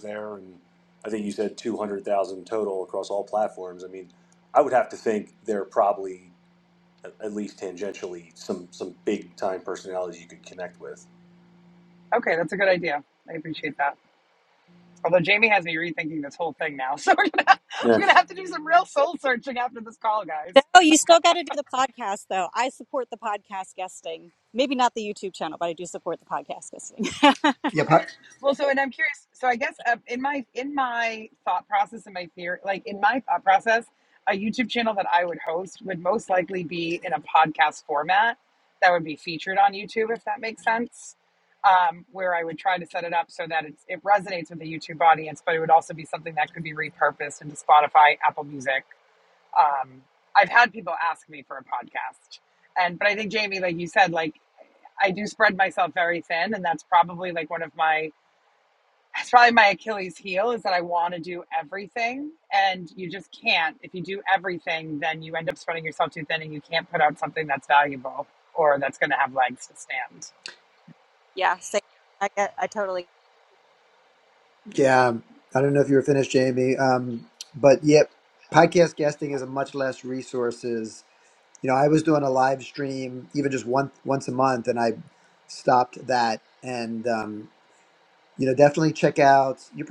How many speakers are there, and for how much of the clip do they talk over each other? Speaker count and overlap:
four, under 1%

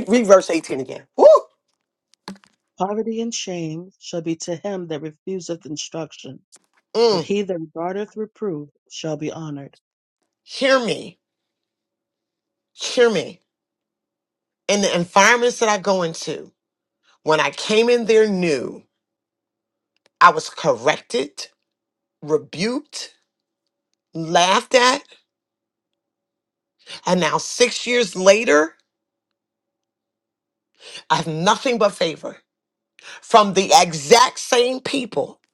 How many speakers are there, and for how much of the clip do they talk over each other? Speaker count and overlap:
two, under 1%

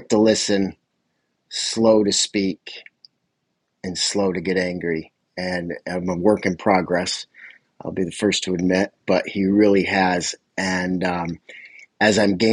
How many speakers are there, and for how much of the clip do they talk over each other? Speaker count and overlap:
one, no overlap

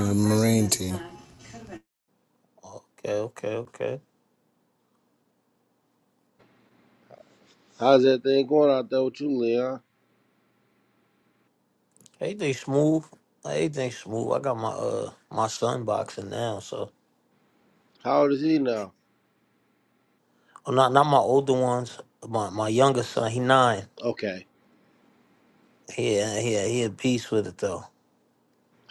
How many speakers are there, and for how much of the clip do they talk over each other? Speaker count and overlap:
three, no overlap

